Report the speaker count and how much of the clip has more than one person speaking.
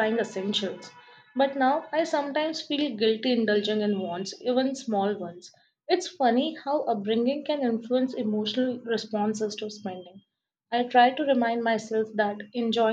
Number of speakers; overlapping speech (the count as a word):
one, no overlap